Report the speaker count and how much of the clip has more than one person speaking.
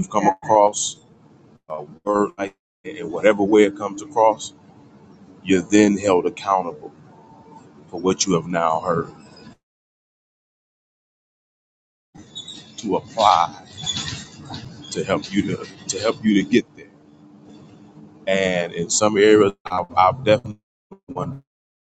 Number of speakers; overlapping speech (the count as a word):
one, no overlap